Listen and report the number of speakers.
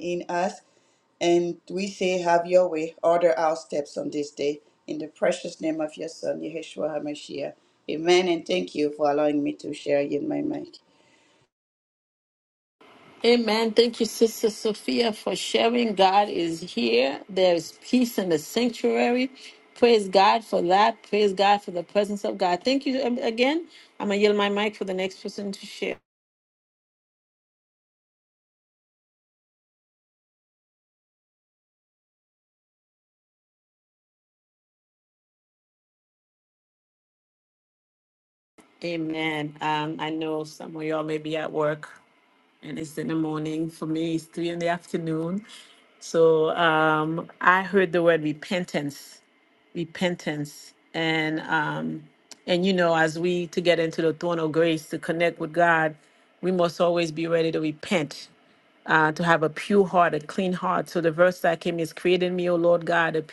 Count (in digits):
2